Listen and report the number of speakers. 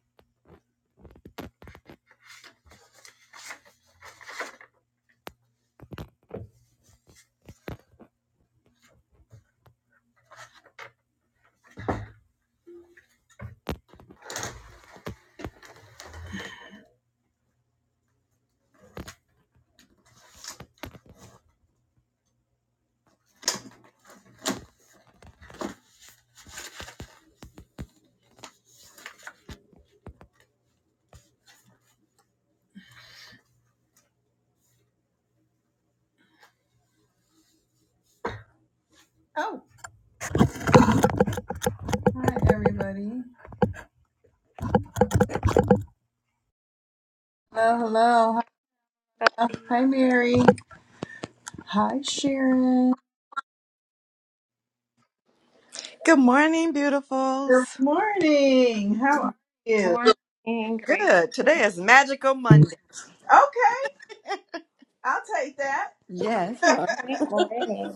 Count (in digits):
3